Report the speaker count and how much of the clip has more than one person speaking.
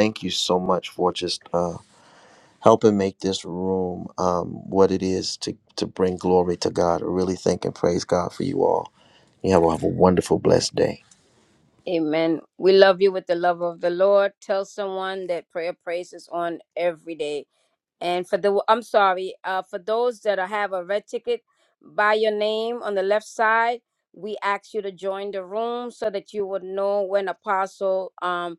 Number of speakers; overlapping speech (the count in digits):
2, no overlap